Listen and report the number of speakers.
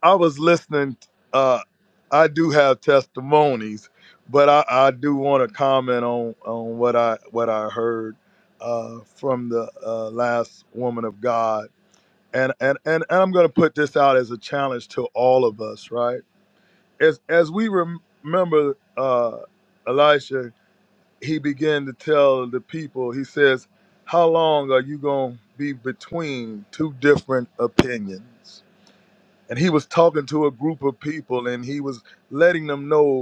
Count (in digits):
1